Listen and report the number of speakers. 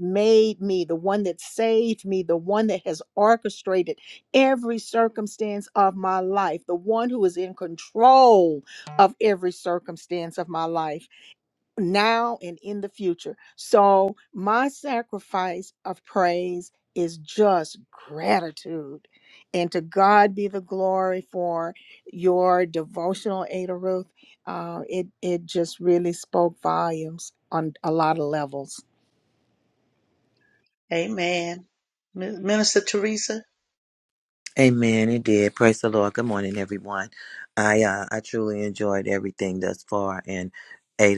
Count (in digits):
3